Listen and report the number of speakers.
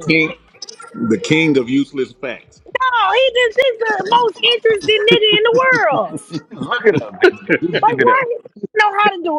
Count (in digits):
3